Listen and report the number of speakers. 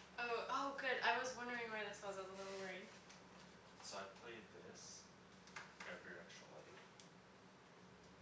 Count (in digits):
2